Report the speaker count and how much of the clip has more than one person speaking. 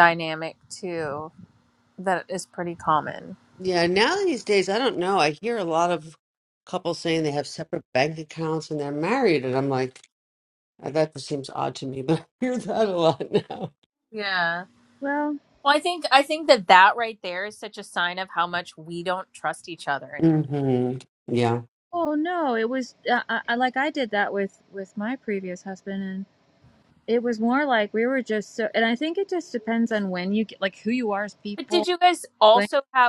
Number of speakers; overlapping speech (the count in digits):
3, about 1%